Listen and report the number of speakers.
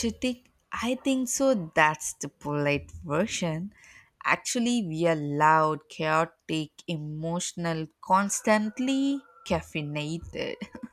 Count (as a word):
one